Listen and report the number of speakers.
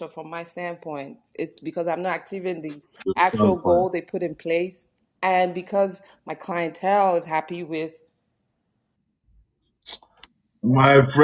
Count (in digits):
2